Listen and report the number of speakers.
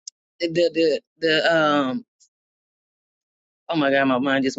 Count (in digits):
1